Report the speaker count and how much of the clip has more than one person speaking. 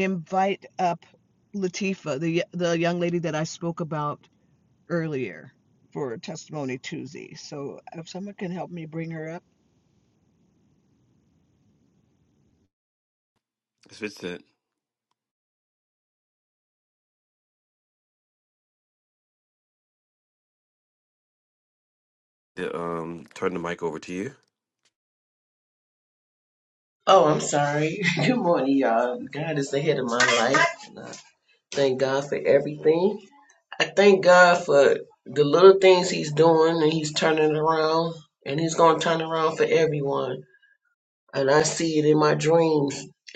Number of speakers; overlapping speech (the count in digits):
3, no overlap